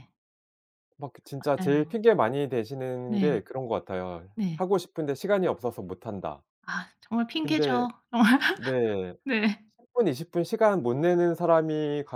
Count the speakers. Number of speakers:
2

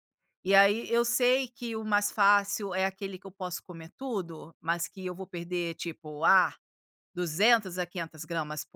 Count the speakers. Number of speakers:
1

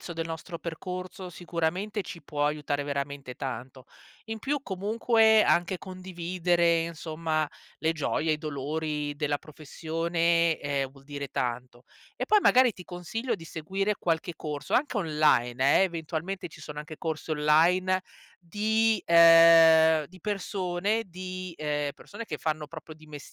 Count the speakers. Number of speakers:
1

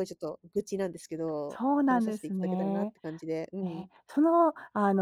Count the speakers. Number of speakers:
2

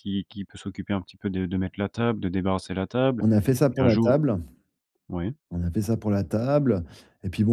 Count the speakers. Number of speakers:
2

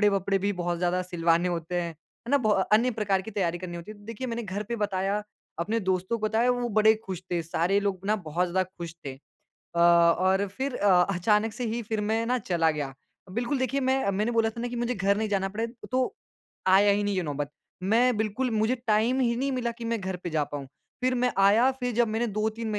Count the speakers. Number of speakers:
1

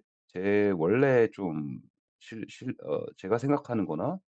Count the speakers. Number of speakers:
1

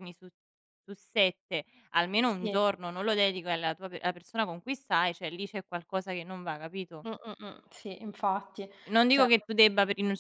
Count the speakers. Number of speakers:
2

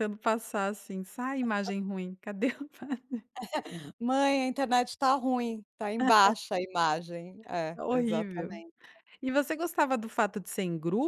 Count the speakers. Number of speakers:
2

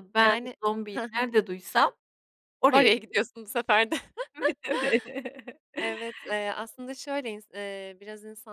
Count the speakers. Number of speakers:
2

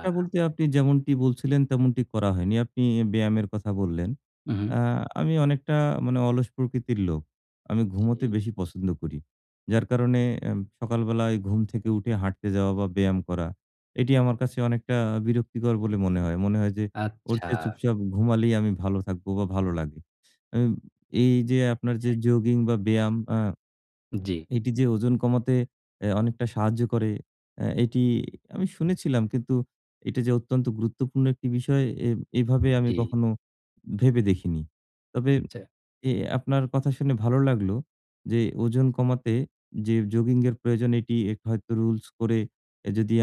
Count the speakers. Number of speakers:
2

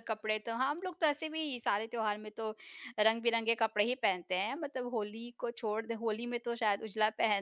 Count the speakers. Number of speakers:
1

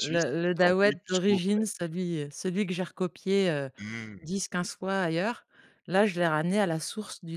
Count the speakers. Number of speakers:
2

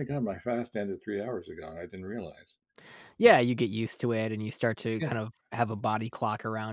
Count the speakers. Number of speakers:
2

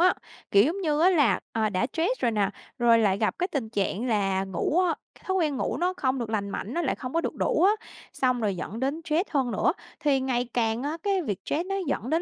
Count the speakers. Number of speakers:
1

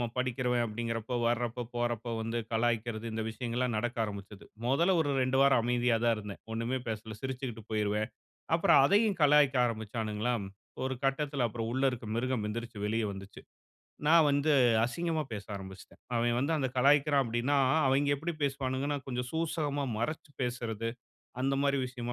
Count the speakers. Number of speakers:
1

